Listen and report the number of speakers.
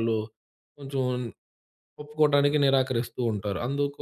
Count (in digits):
1